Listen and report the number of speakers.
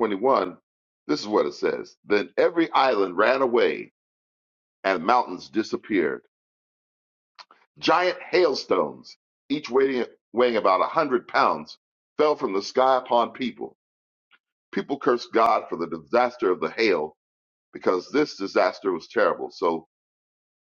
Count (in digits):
1